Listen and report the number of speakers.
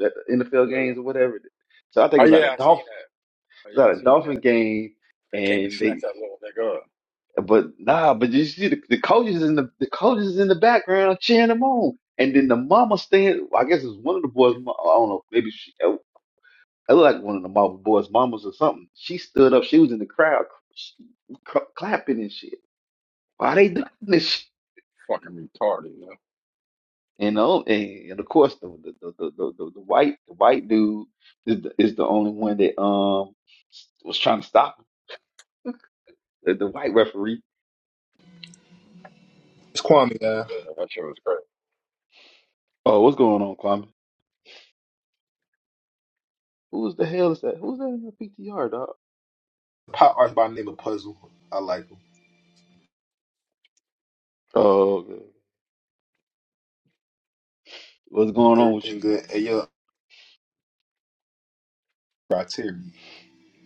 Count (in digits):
3